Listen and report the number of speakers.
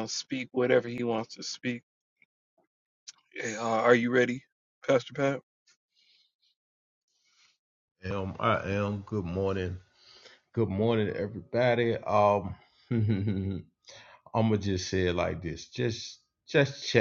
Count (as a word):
two